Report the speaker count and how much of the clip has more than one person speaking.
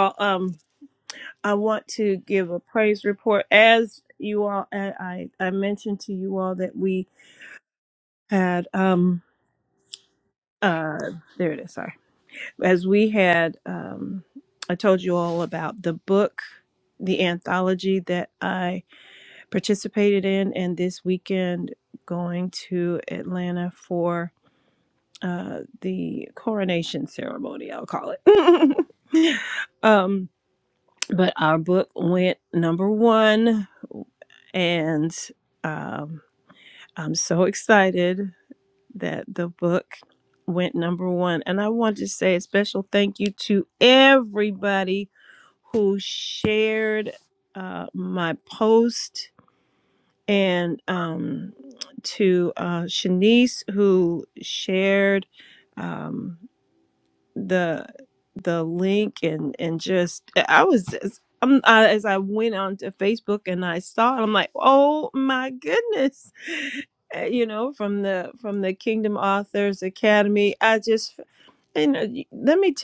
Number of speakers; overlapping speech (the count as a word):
one, no overlap